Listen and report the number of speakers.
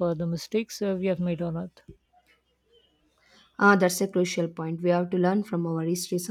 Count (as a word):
two